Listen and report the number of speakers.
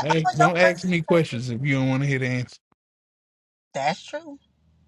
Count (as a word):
two